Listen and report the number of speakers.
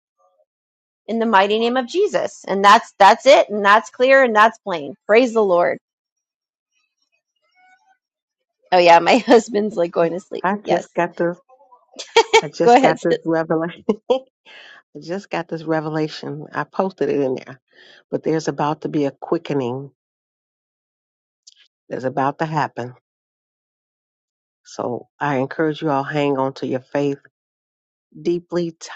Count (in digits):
2